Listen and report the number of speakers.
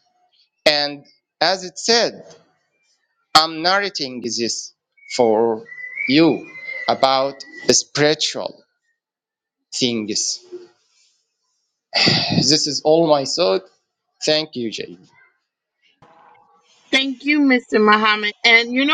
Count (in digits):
2